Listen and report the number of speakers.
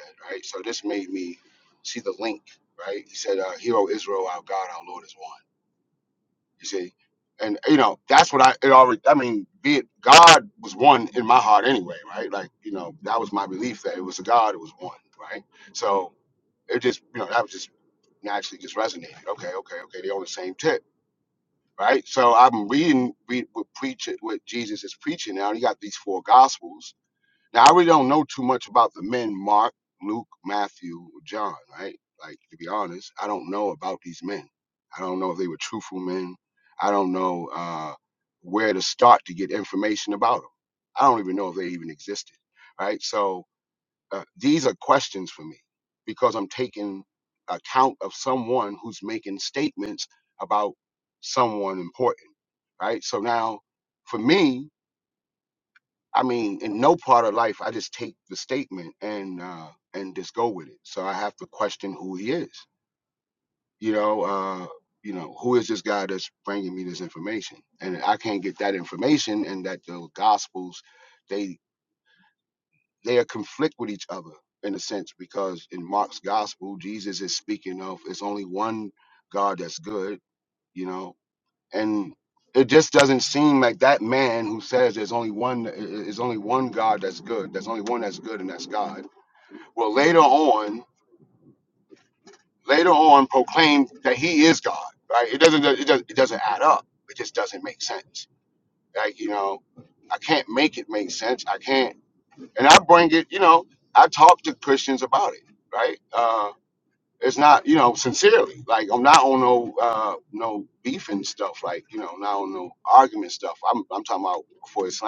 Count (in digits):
1